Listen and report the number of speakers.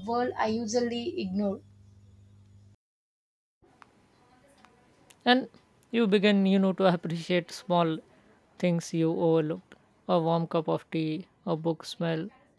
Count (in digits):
2